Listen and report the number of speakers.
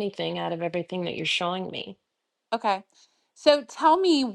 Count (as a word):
two